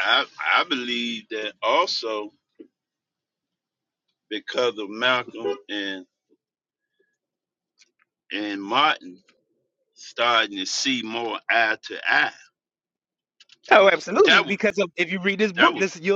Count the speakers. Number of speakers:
2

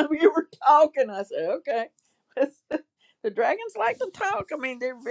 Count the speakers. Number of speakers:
1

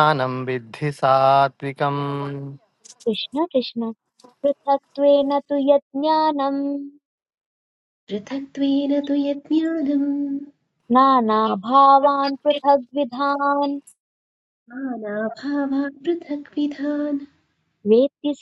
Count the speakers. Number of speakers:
3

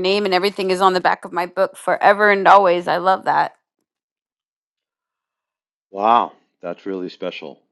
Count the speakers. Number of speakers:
2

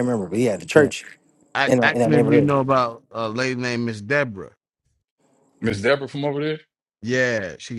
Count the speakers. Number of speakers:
3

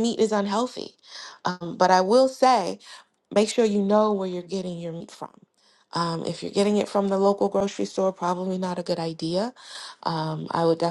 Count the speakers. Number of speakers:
1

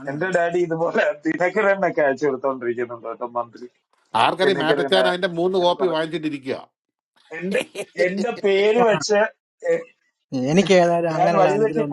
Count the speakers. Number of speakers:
3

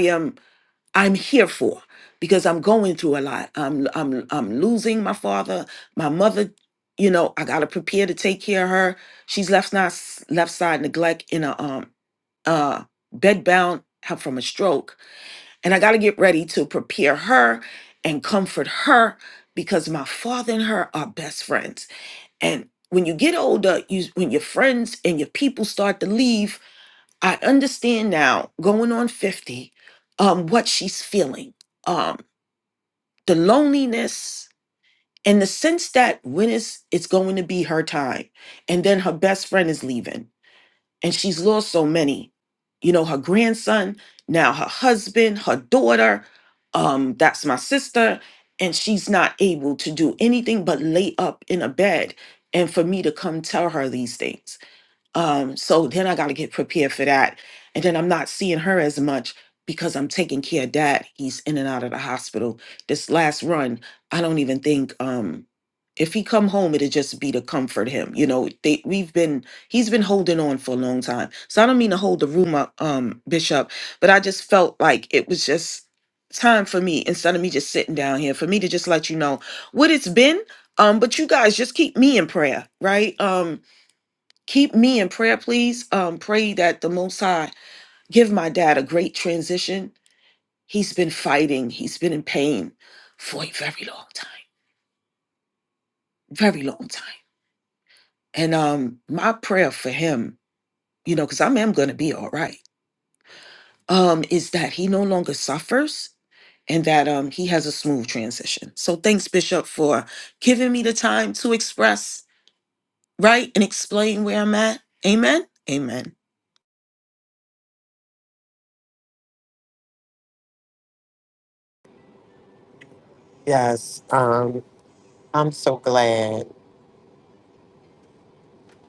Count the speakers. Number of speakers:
2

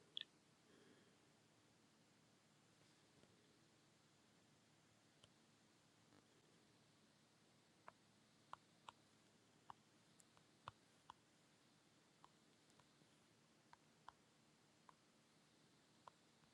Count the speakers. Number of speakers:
0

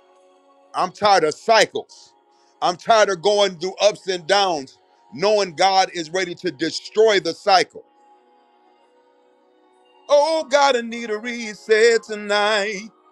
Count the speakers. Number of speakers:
1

